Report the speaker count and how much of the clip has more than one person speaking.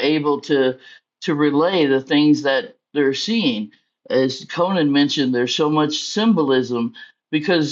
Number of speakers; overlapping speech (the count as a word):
one, no overlap